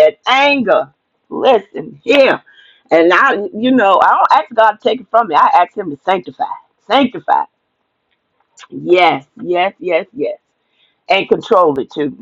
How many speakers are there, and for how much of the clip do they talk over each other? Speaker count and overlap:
1, no overlap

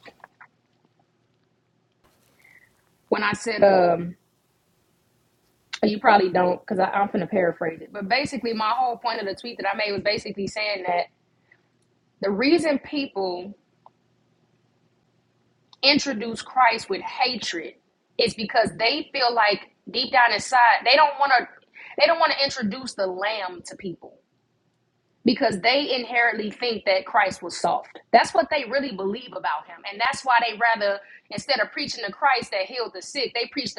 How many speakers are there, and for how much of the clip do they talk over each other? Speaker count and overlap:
1, no overlap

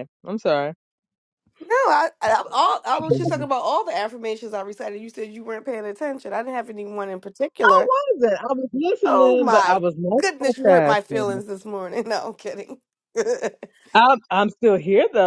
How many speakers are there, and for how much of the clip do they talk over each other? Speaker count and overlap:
2, about 11%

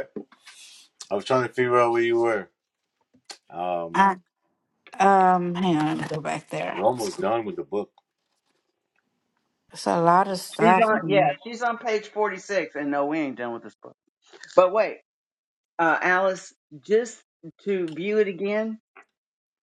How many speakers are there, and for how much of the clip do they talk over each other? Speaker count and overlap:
3, about 3%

